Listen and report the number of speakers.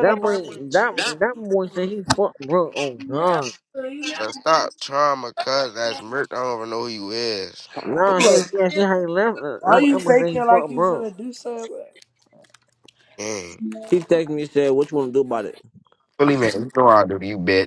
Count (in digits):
3